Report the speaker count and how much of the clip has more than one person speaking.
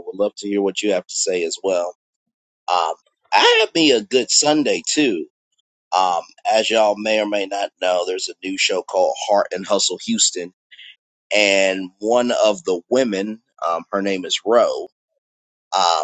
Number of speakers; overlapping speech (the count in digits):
1, no overlap